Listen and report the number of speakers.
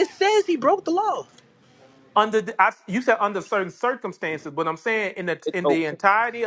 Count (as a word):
two